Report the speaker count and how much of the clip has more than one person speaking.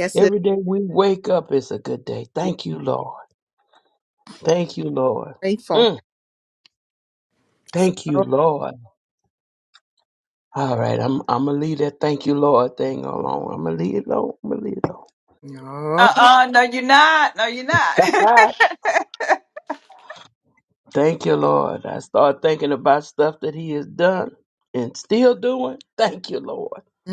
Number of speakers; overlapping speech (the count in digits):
3, about 3%